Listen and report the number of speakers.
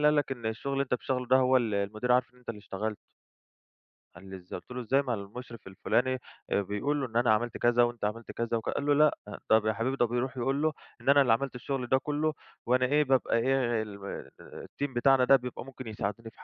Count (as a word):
one